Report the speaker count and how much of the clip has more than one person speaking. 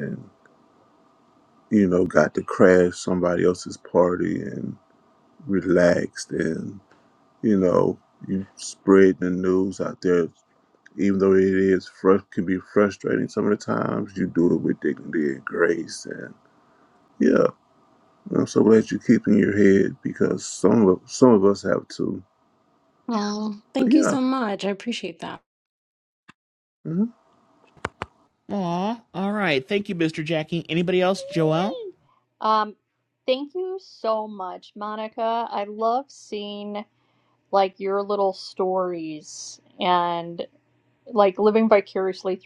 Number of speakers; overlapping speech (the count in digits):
4, about 1%